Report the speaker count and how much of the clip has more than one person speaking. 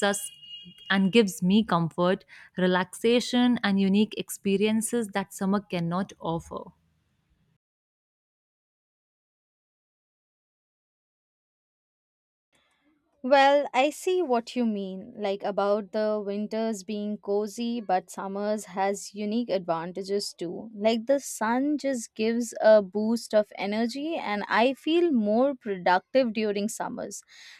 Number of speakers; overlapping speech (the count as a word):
two, no overlap